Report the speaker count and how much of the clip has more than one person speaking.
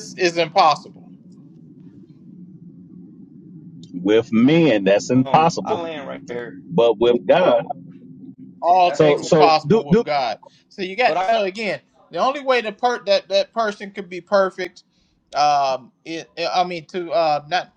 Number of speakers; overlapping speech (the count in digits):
3, about 13%